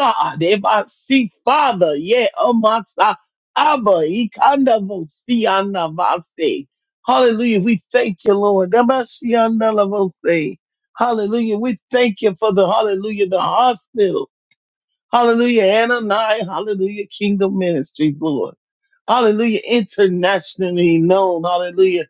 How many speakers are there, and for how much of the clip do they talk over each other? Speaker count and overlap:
1, no overlap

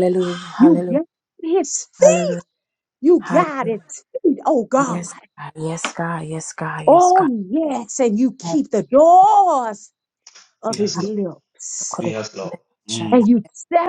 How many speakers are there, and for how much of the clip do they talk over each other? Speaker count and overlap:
3, about 18%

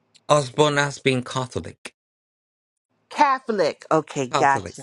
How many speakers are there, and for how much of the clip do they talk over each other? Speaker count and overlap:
2, about 9%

